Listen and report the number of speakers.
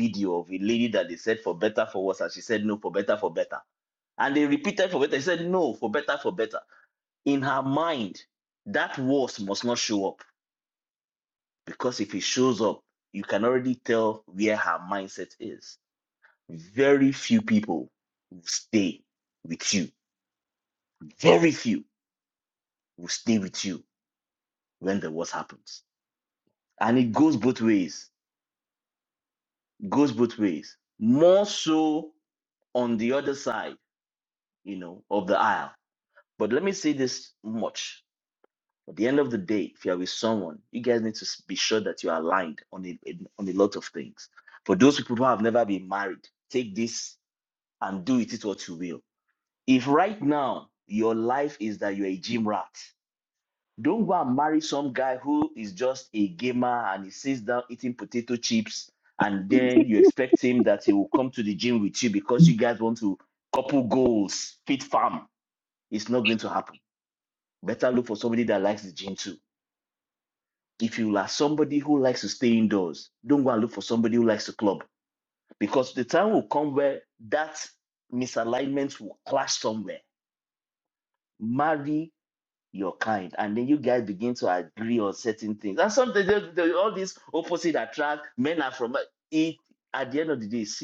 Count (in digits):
1